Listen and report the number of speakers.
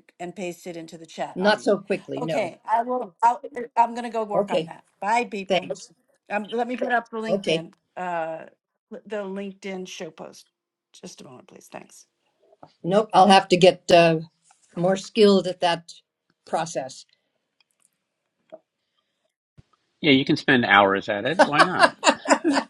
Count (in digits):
3